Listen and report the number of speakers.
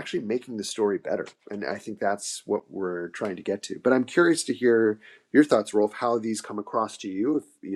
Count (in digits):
1